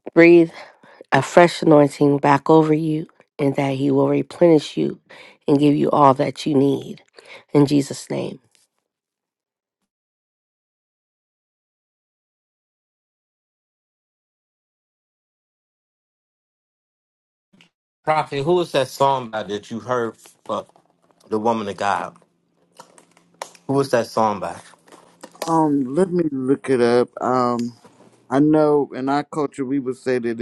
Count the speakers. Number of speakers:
three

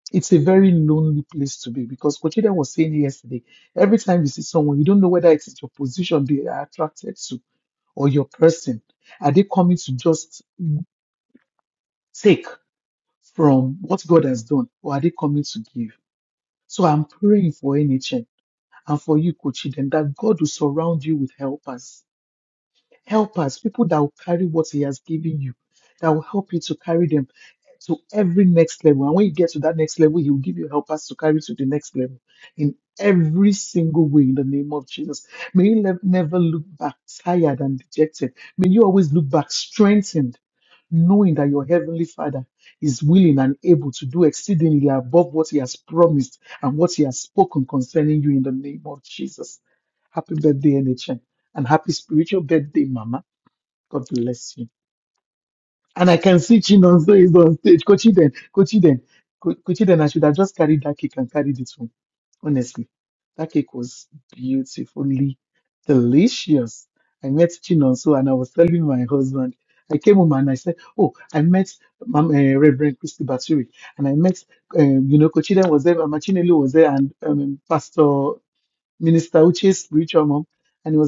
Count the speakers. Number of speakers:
one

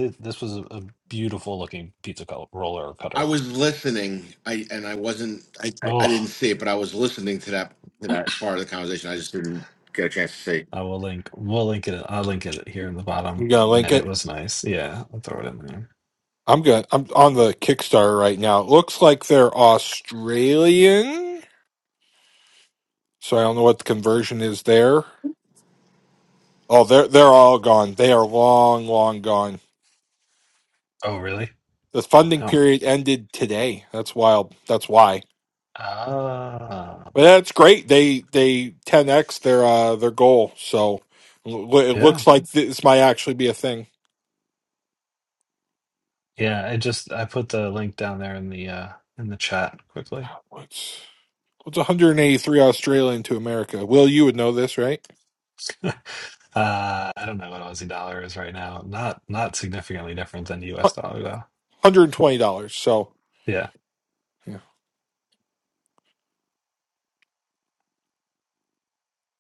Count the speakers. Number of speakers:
three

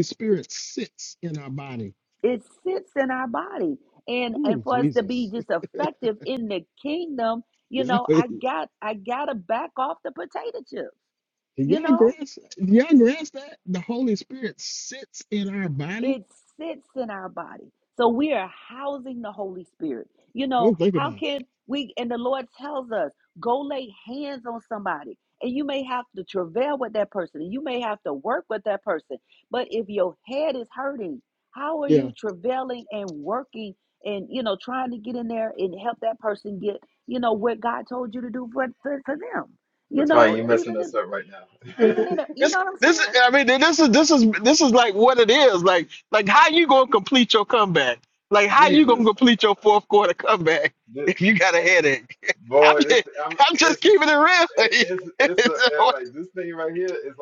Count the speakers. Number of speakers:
three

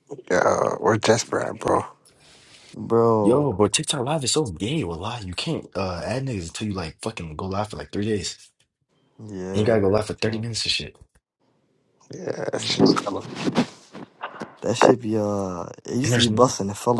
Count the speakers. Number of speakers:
three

